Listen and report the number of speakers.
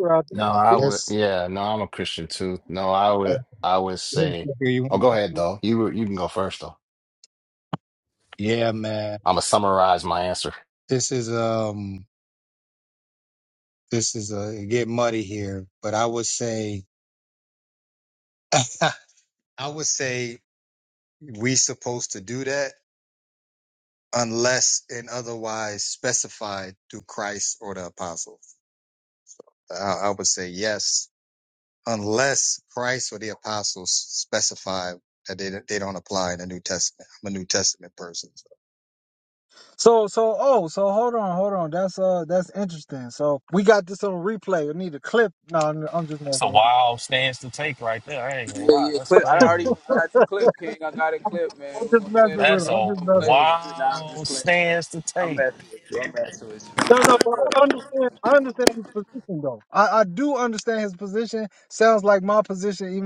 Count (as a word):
five